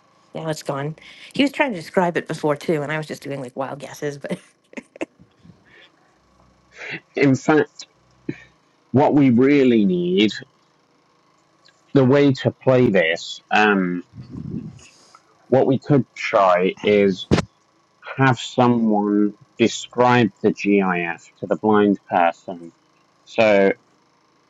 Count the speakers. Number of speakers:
2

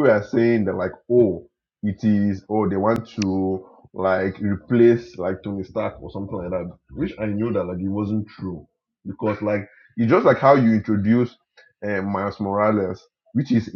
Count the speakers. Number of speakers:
1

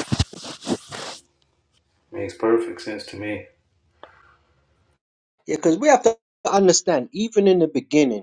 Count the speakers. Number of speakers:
2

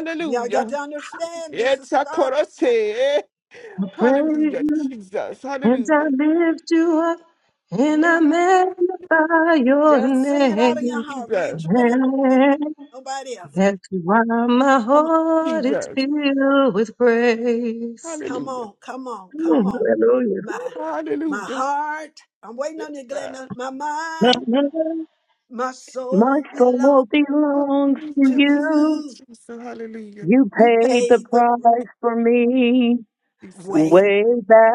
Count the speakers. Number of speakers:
4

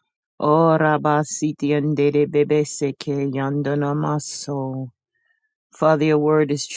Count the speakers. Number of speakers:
1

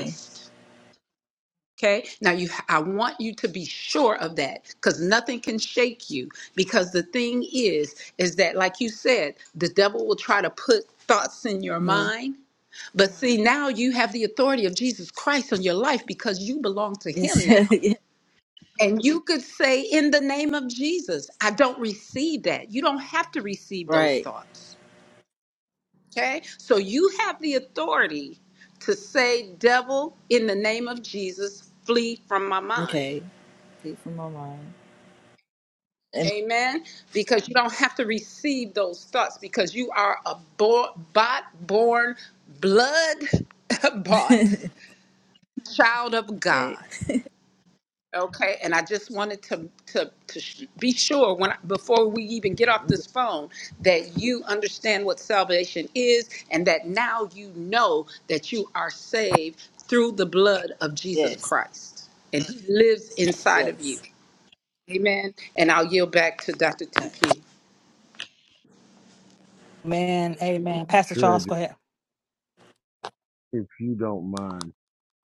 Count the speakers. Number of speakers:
4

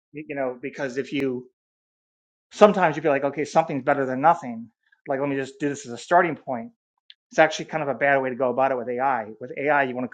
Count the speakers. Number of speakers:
1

